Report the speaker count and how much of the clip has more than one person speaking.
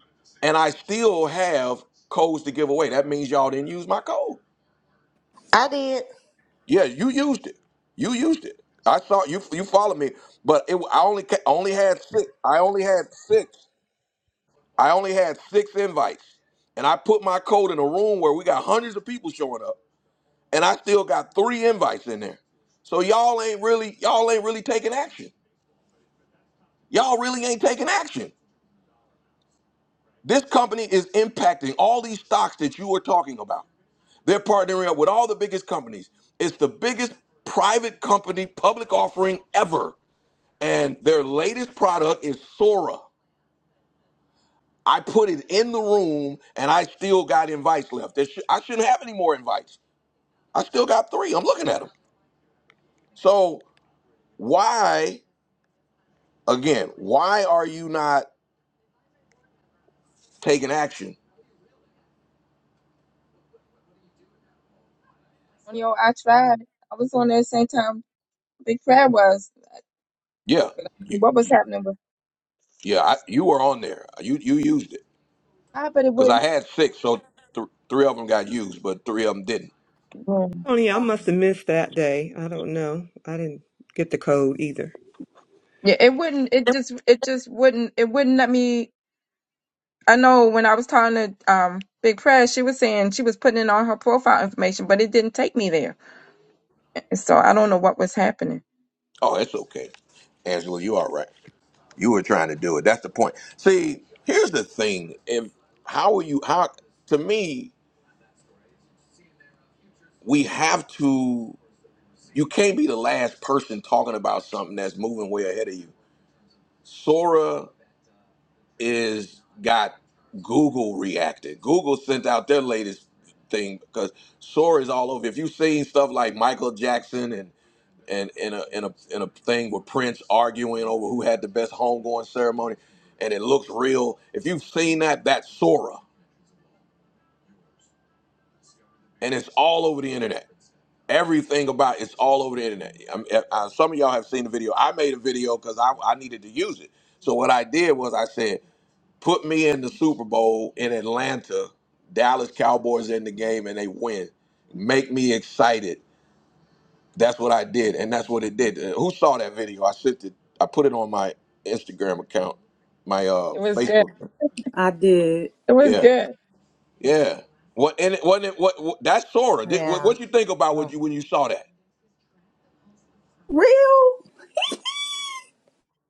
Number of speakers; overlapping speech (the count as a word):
five, about 1%